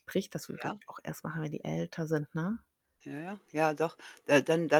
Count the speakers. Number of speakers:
two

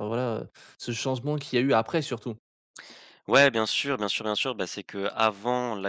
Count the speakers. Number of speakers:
two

